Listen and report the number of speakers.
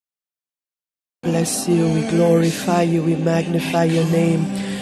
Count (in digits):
1